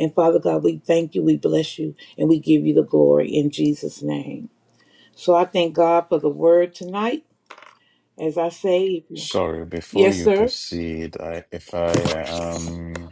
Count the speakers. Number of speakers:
two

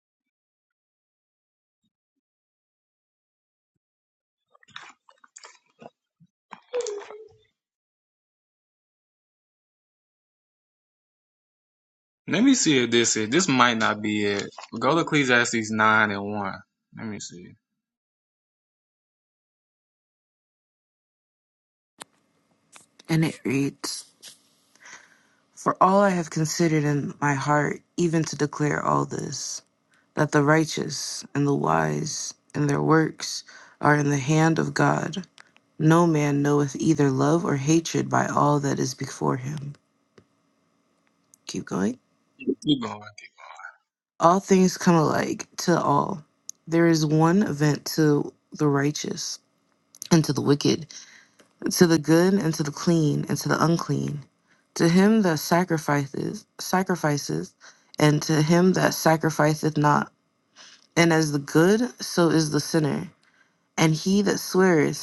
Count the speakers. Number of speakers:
two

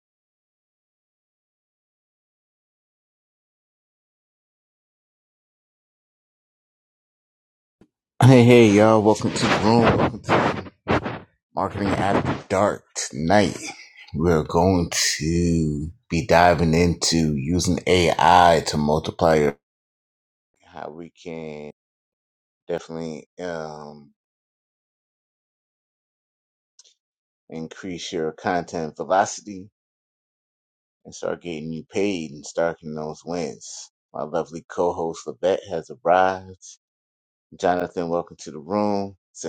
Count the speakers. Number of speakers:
one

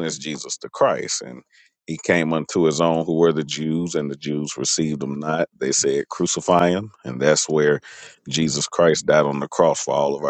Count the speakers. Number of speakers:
one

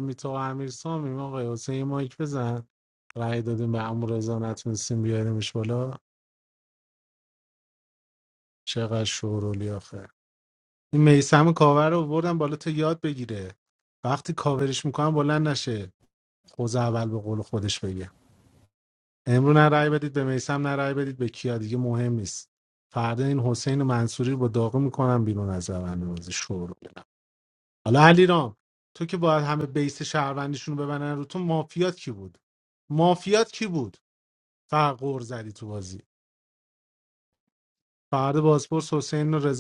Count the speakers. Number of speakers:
one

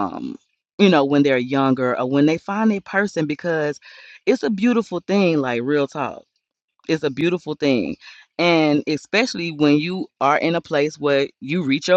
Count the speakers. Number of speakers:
one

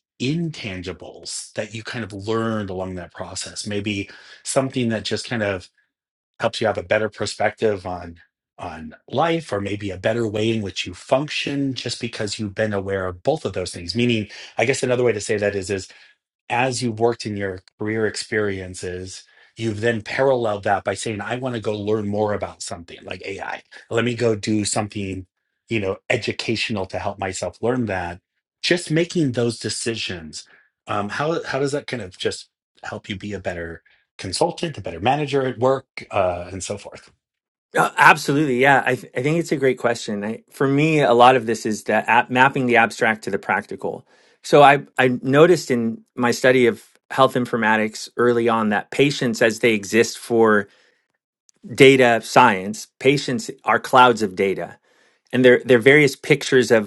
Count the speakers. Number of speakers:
two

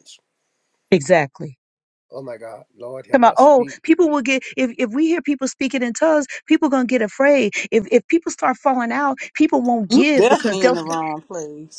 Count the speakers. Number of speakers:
three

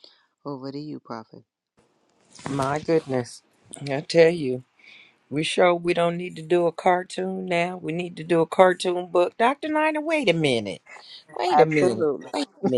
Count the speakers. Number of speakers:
two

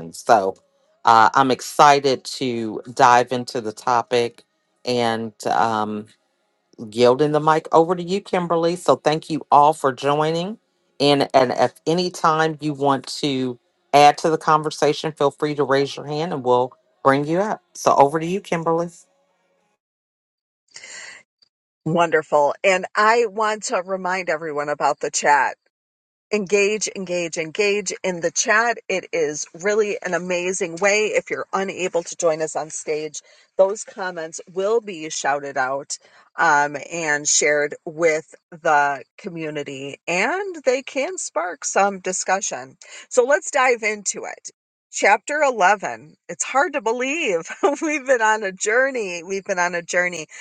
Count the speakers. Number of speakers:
two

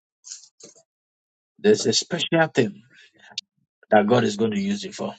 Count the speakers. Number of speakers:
one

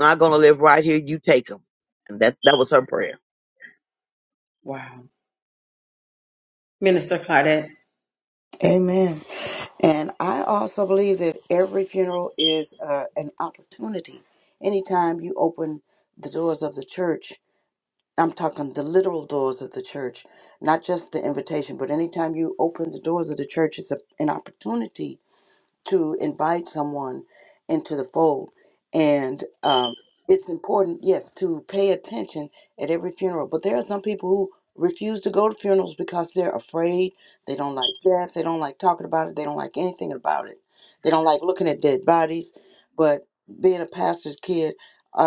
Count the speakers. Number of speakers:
three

